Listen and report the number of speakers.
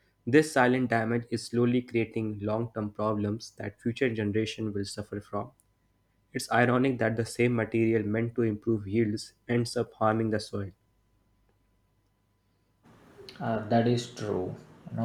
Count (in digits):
2